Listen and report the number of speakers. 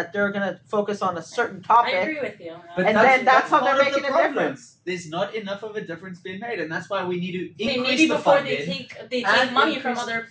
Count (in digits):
3